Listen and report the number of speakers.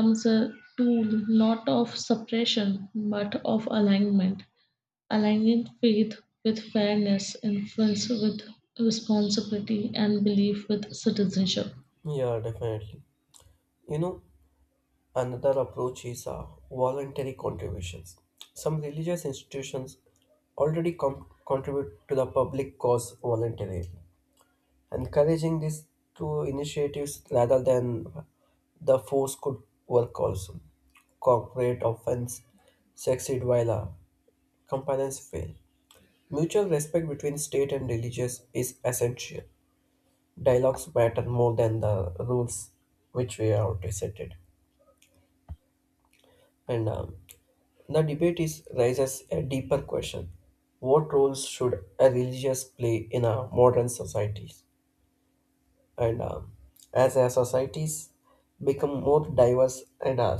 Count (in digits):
2